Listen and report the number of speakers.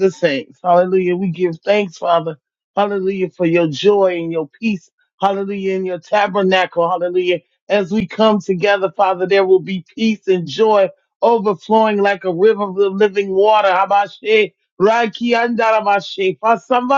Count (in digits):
1